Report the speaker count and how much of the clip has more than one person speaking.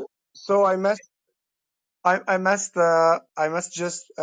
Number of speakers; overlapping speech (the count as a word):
one, no overlap